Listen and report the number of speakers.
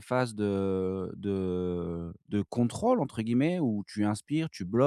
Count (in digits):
1